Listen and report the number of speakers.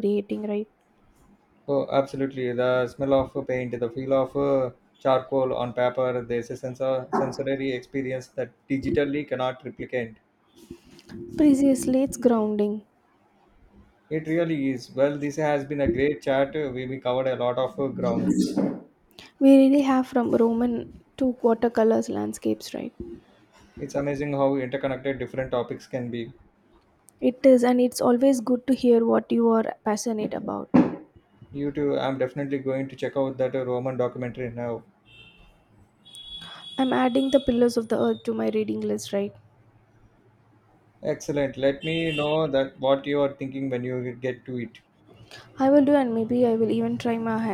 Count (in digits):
2